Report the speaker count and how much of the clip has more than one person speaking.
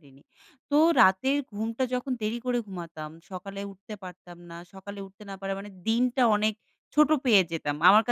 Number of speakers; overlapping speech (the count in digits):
1, no overlap